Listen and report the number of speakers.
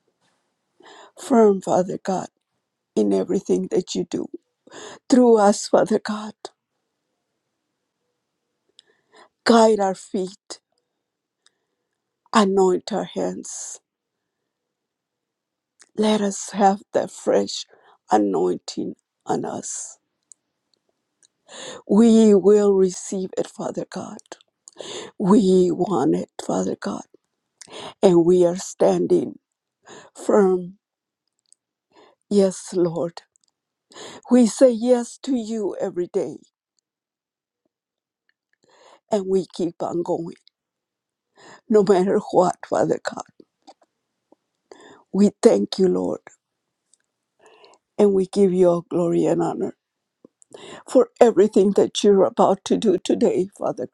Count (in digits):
1